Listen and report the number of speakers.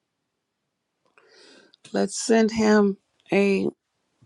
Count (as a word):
one